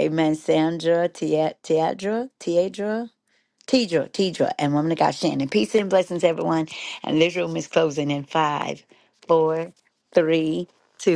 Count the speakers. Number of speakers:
one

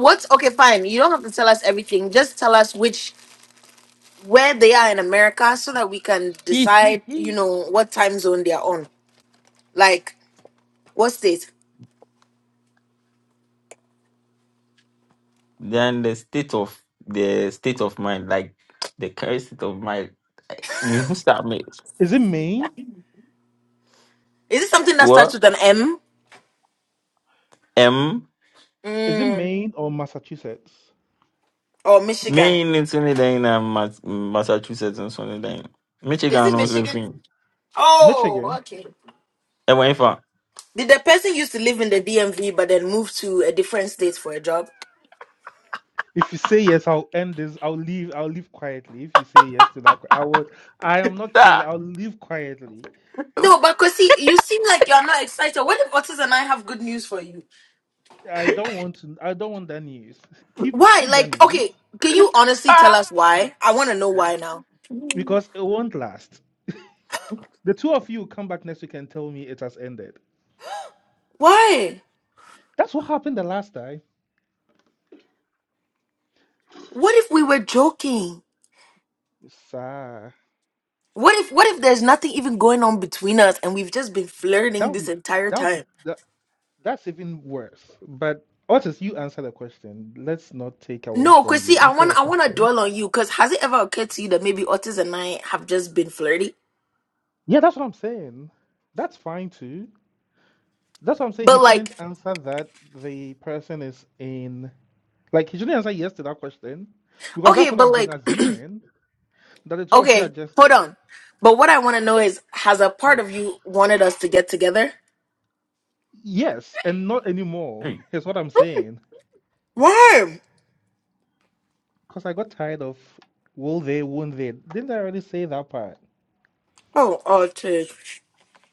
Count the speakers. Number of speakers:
three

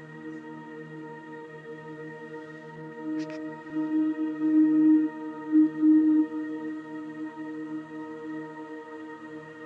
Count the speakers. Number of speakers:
zero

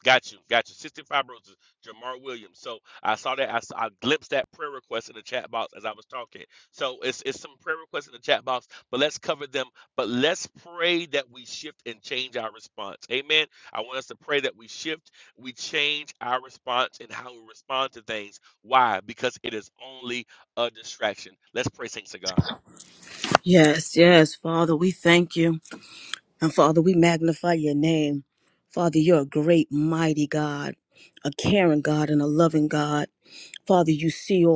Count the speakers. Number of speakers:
two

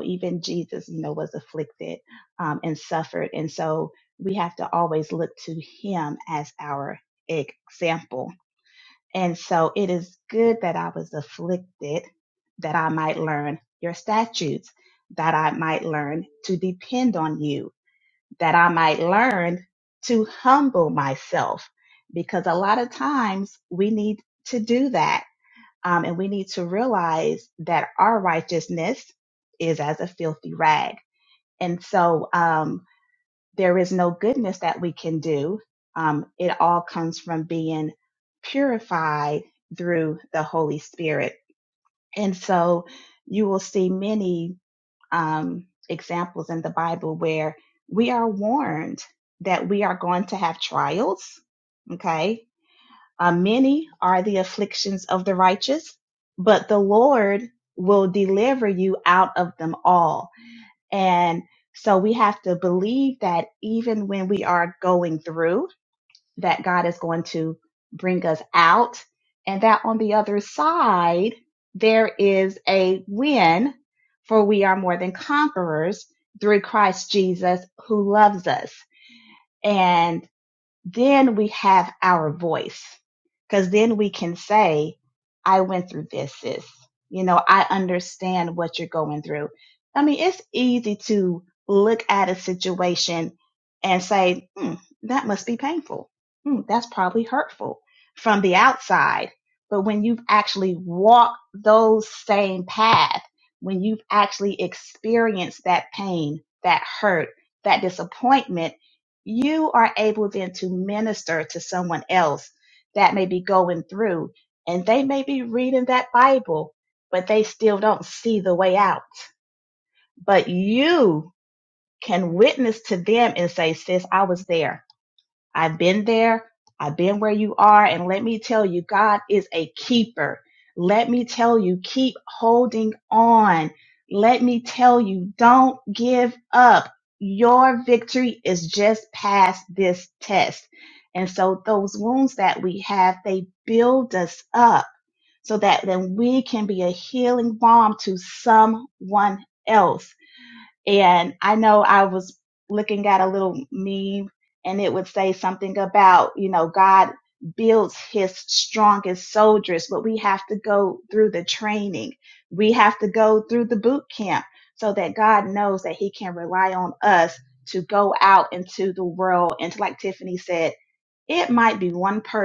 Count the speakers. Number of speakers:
one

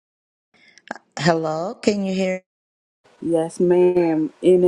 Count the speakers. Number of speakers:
two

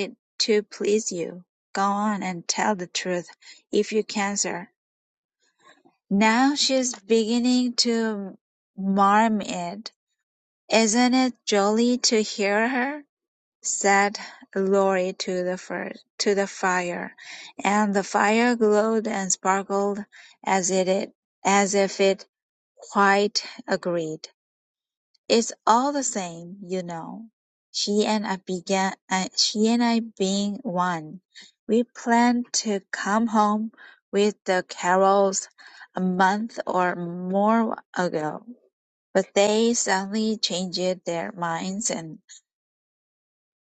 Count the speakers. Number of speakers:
one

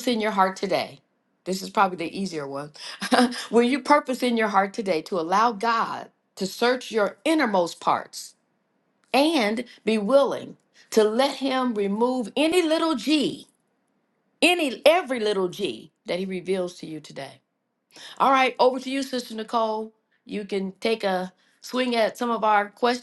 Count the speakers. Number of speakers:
one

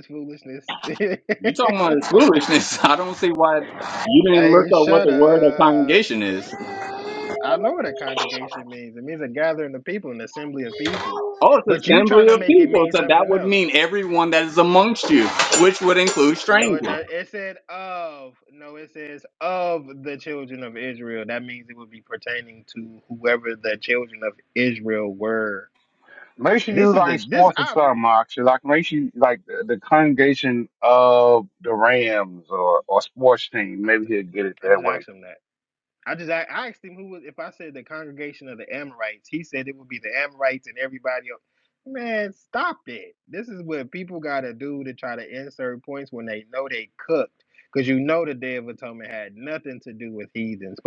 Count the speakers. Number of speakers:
three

